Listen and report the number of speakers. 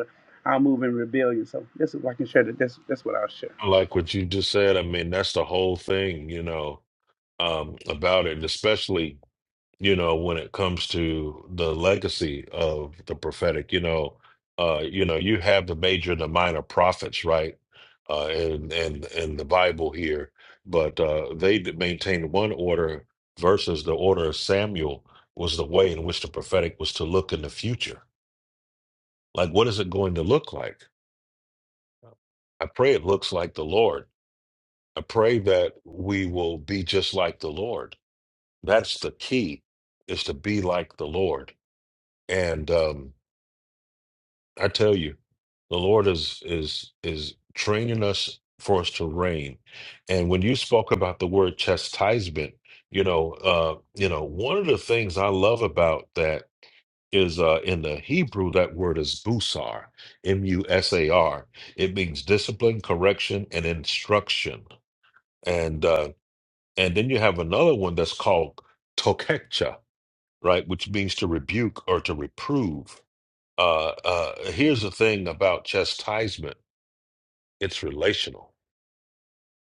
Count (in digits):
2